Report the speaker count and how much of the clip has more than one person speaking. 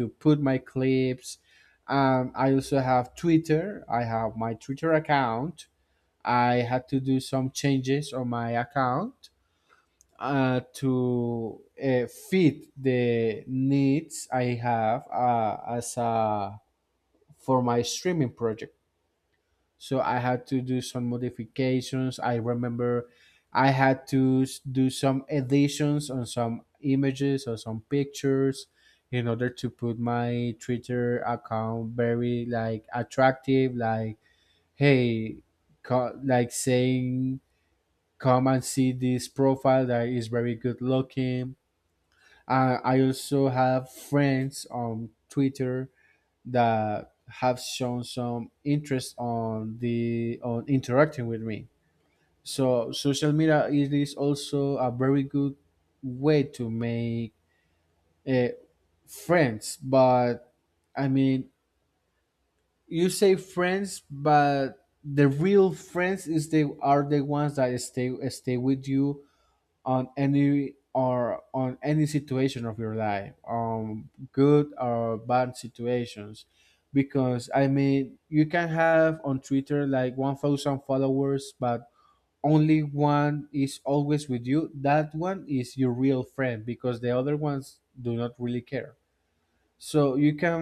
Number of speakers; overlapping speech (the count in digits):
1, no overlap